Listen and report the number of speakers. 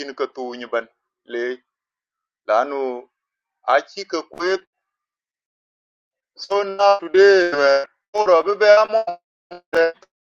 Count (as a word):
one